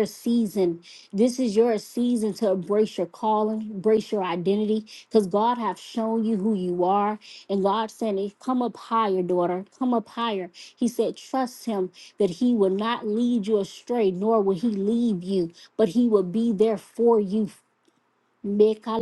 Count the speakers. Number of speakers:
one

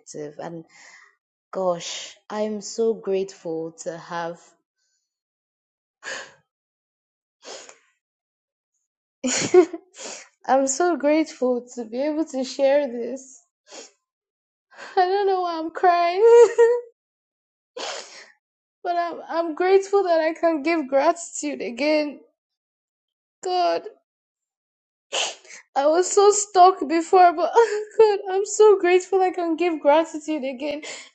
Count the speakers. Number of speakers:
one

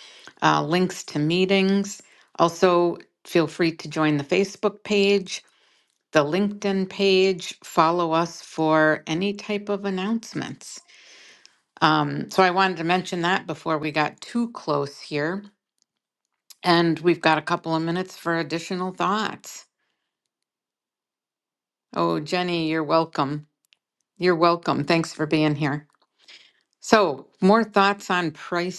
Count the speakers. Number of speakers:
one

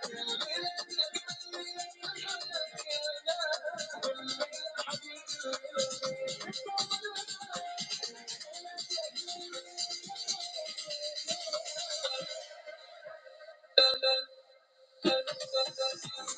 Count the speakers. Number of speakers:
zero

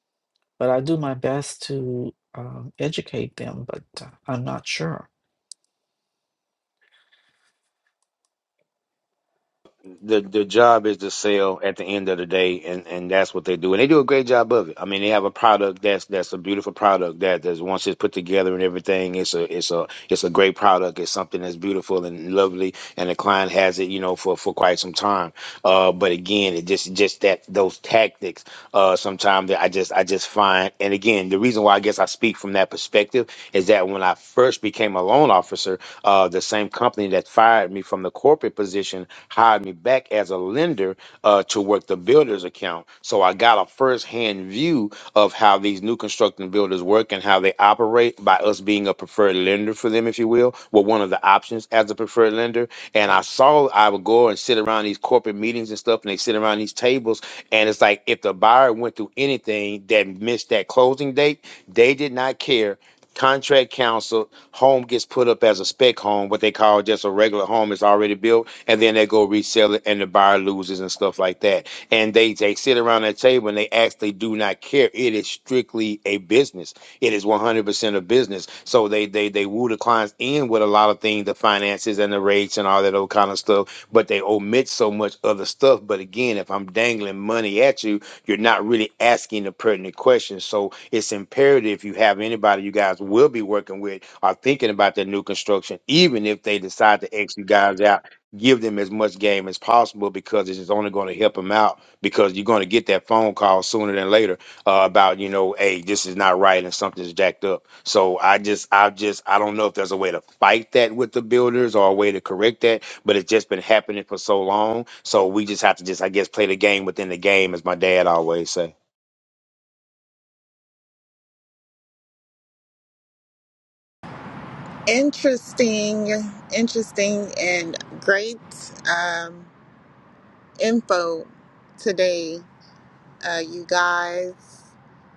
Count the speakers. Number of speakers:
three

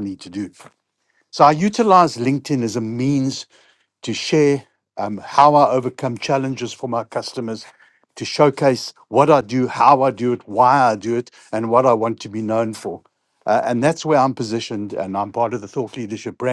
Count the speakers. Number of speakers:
one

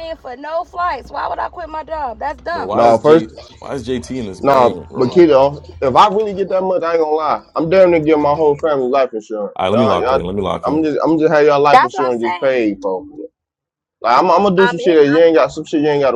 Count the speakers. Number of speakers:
three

